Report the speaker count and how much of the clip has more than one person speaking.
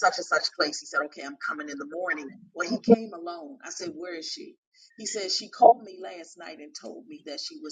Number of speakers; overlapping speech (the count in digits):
1, no overlap